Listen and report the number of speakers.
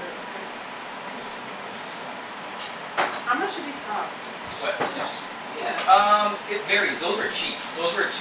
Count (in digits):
2